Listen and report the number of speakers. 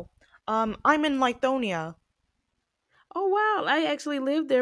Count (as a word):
two